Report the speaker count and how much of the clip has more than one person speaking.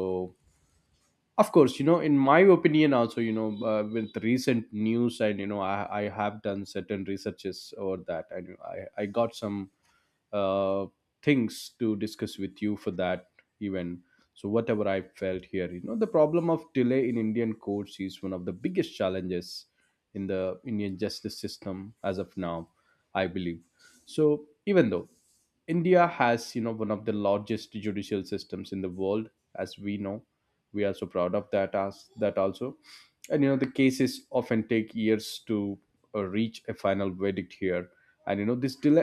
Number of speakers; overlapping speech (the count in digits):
1, no overlap